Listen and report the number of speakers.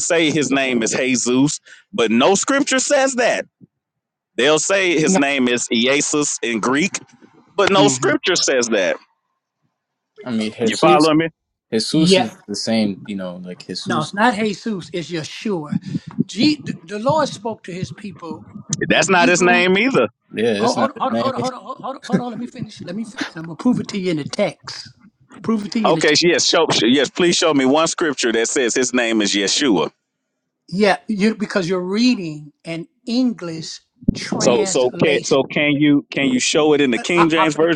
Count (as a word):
three